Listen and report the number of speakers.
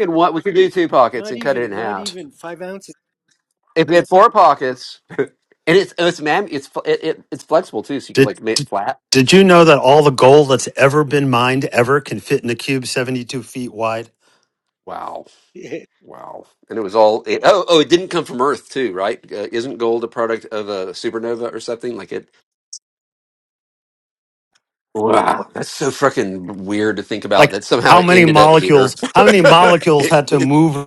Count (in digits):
3